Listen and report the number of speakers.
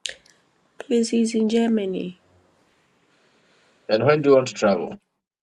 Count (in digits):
2